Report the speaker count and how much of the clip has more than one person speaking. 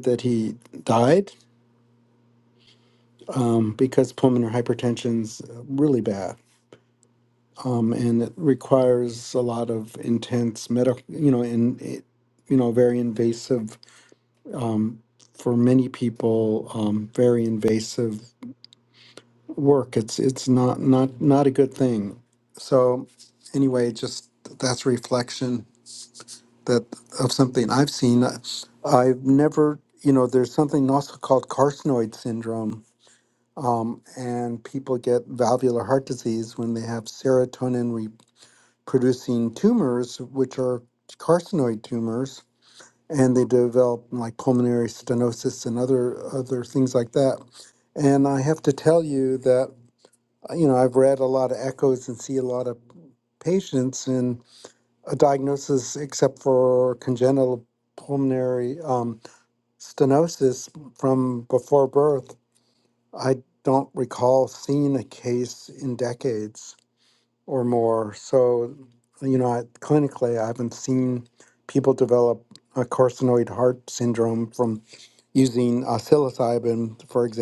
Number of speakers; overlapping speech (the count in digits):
1, no overlap